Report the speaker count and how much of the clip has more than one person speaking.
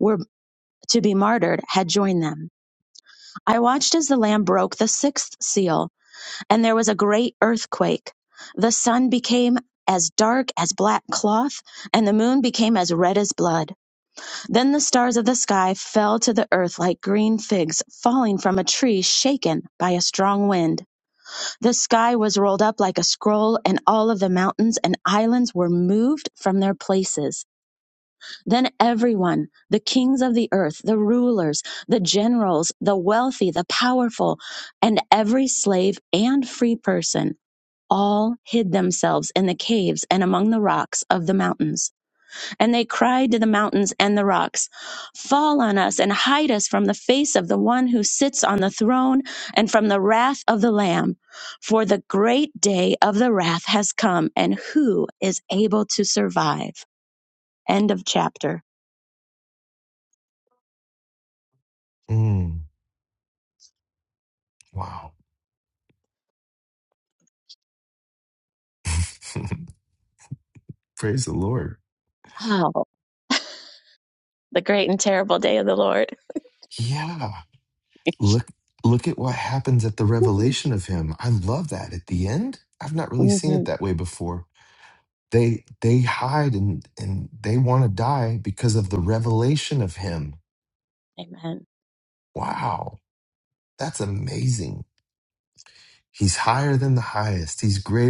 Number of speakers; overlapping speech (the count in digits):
2, under 1%